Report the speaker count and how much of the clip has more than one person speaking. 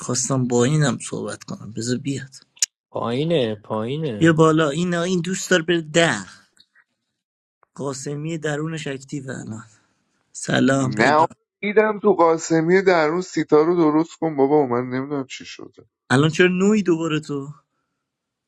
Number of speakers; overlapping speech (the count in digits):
3, about 3%